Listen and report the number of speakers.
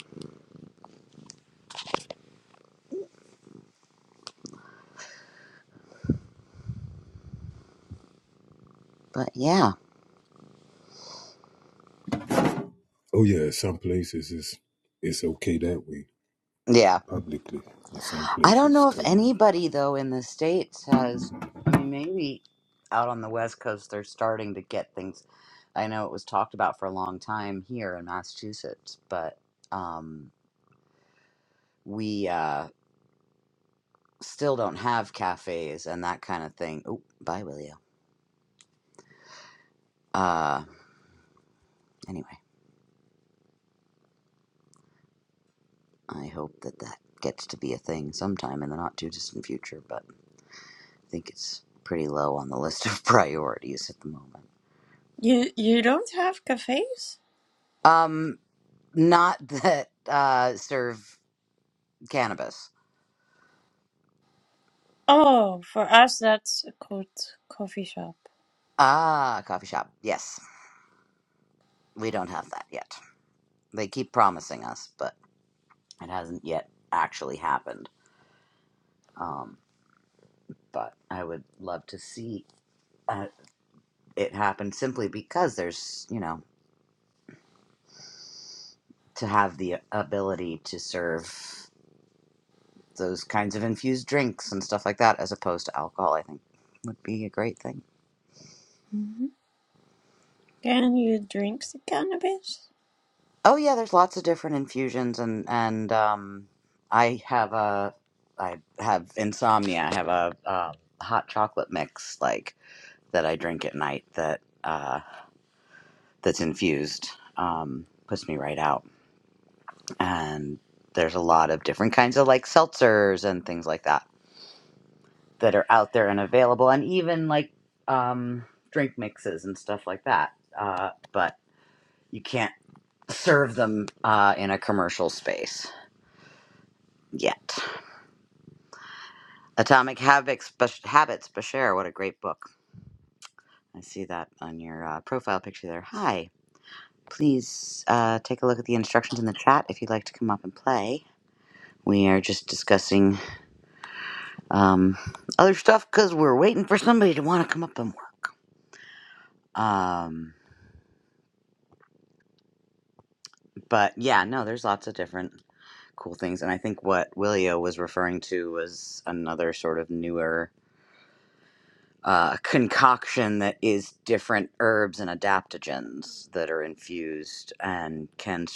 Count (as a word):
three